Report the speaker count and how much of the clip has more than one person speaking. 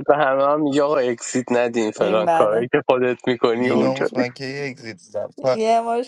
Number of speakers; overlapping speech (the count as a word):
three, about 19%